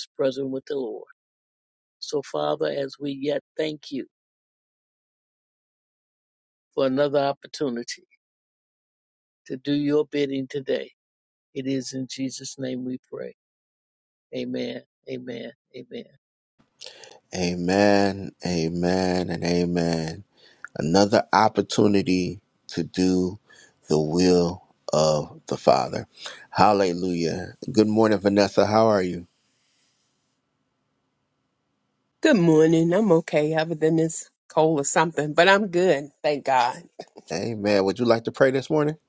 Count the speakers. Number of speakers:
three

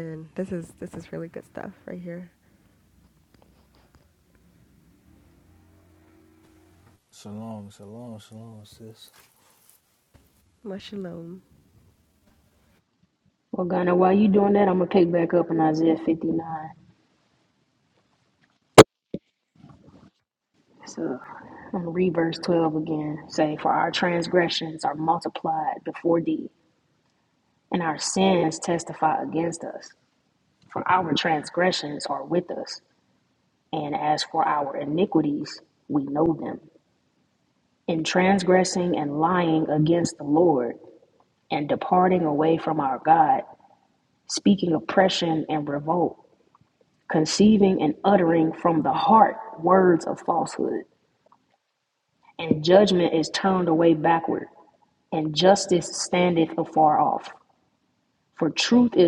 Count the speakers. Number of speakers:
three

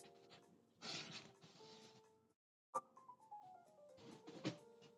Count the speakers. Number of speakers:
zero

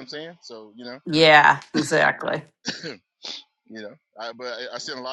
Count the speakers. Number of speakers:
two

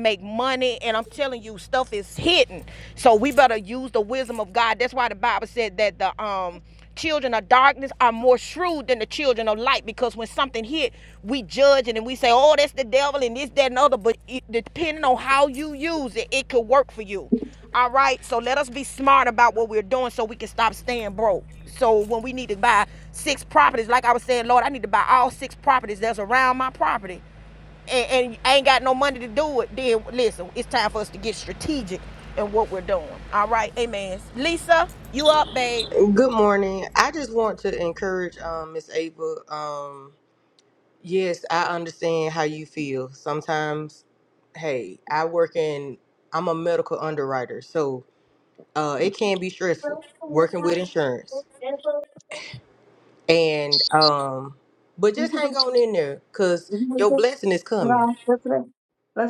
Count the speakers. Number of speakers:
three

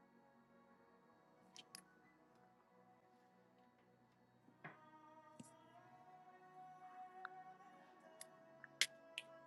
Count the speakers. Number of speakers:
zero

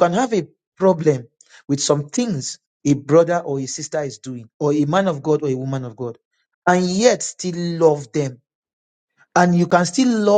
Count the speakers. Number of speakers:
one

